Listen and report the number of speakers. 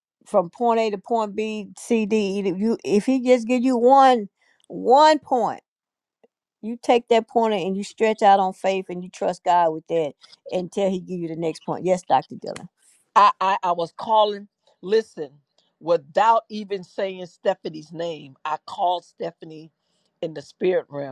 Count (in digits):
2